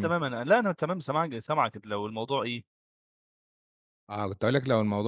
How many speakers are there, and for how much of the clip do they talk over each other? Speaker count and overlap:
two, about 2%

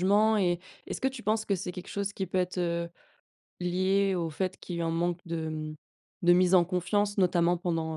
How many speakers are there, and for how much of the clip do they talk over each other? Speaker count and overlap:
one, no overlap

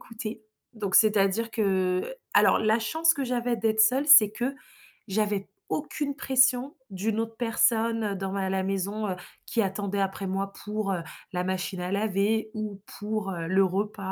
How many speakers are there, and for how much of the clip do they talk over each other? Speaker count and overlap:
one, no overlap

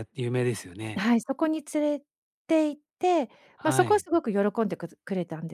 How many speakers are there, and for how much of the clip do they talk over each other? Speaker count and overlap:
two, about 7%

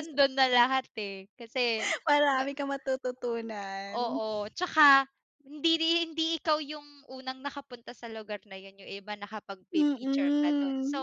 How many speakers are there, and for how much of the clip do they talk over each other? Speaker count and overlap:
two, about 11%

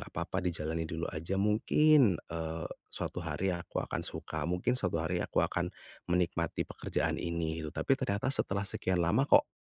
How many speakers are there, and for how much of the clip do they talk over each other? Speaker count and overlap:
one, no overlap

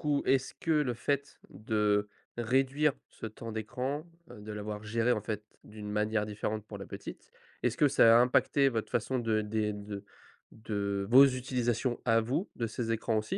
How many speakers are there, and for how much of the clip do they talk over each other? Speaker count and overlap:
one, no overlap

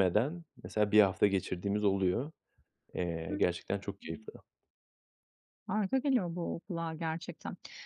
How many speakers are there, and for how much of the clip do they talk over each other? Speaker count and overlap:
two, no overlap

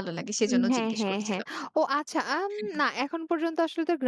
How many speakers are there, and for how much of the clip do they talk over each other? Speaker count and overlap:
two, about 24%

